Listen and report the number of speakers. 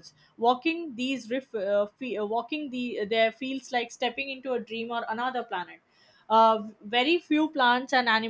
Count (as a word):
one